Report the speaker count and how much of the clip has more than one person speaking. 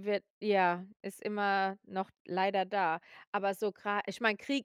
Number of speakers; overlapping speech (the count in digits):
1, no overlap